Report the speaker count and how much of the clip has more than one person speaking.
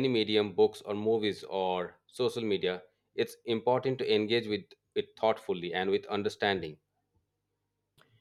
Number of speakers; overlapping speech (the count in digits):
1, no overlap